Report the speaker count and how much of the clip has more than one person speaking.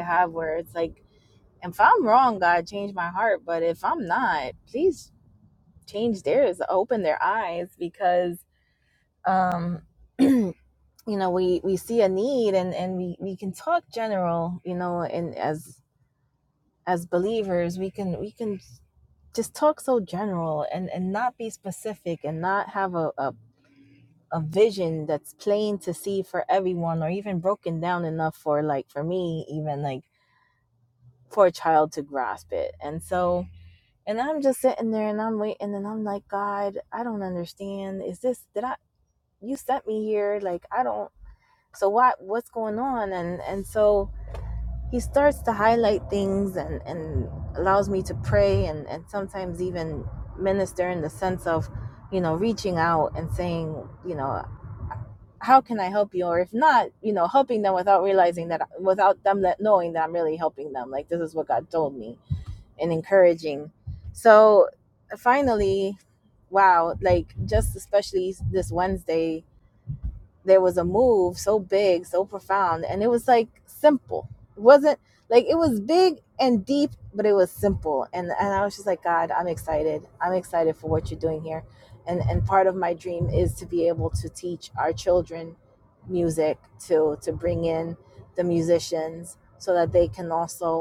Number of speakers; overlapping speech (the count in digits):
1, no overlap